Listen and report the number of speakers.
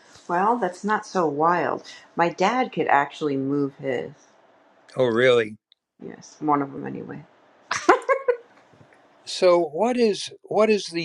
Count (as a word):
two